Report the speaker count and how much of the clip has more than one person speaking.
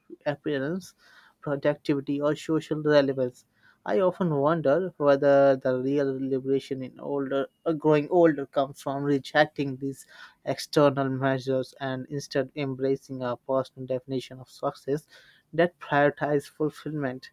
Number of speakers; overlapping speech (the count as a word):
one, no overlap